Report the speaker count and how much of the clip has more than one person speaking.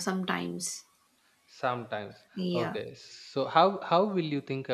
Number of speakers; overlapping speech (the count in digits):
2, about 5%